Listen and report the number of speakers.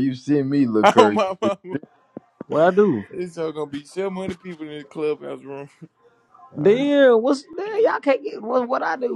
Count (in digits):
3